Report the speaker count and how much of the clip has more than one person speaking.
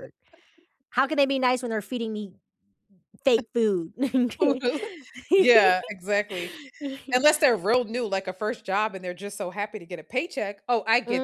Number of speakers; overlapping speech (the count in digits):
2, about 2%